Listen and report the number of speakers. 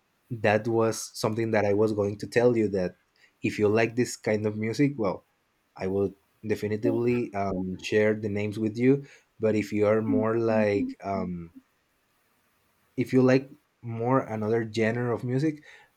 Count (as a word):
one